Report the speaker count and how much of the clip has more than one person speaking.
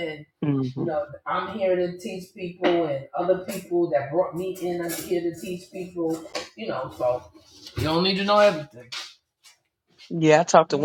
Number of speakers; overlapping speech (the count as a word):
two, about 2%